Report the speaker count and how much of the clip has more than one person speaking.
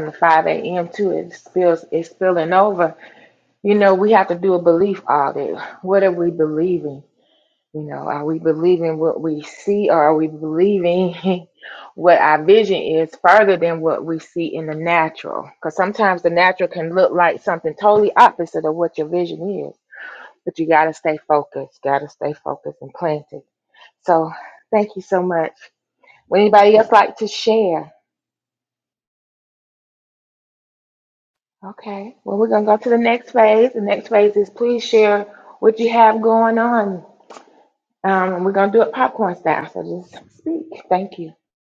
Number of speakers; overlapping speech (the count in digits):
1, no overlap